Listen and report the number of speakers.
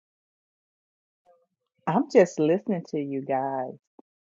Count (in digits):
1